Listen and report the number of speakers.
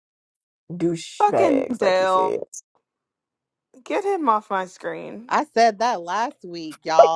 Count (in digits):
3